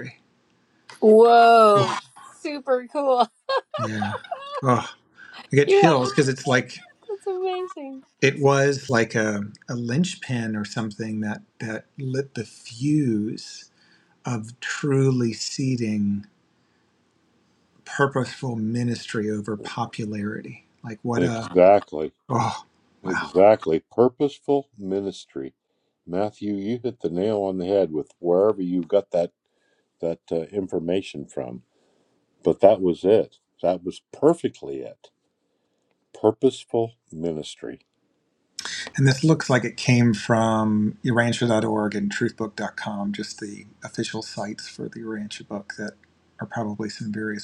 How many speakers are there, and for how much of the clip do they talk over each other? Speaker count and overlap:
3, about 2%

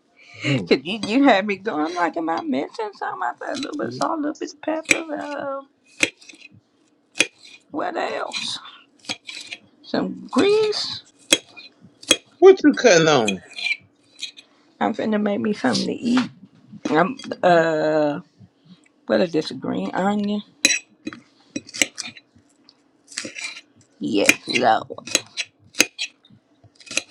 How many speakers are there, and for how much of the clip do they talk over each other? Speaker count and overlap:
2, about 1%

